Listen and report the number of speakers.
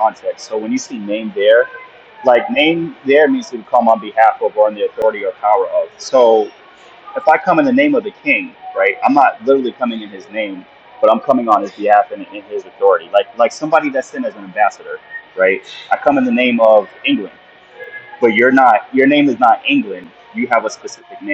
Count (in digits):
1